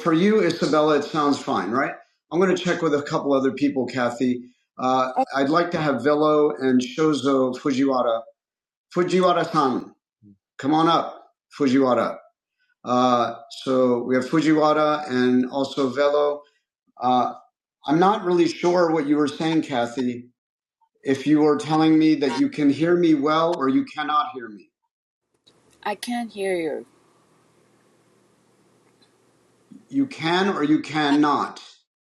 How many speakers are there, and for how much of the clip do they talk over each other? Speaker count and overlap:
two, under 1%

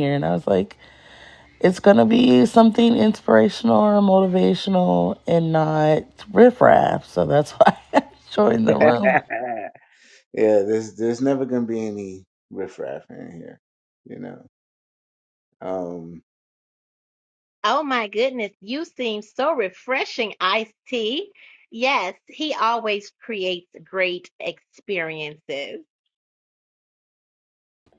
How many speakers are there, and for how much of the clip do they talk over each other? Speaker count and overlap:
three, about 2%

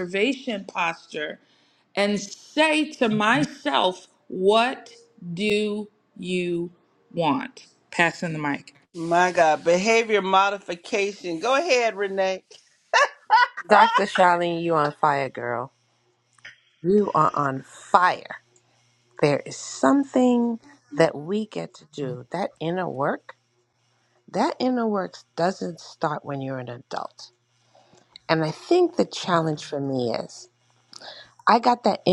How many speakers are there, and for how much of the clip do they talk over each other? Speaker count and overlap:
three, no overlap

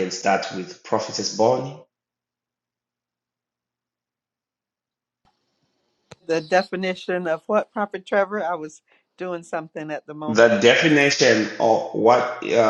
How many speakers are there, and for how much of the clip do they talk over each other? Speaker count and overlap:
two, about 2%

